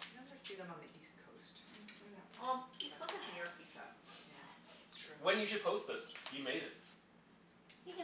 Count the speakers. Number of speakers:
three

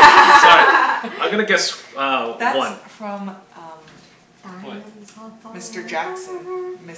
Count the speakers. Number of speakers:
three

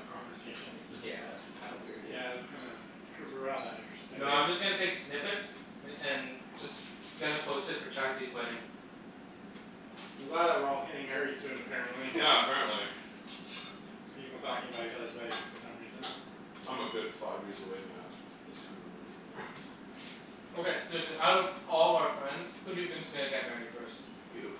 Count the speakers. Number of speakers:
four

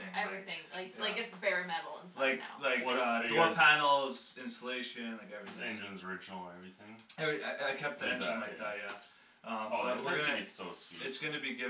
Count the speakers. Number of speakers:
three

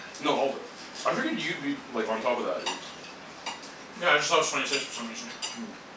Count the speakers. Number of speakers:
two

